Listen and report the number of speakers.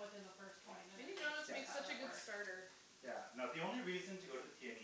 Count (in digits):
3